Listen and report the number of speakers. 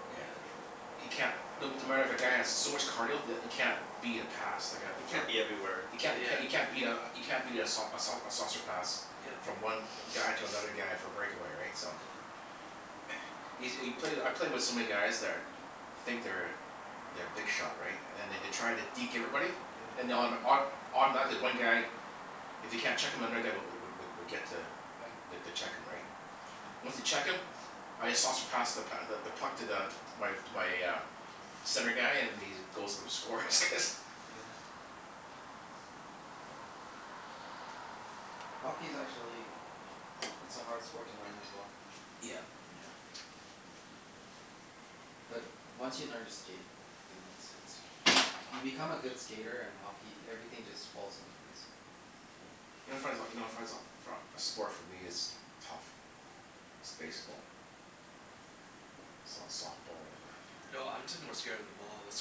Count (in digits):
4